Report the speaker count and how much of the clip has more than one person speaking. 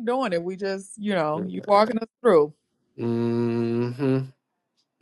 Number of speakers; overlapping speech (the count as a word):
two, no overlap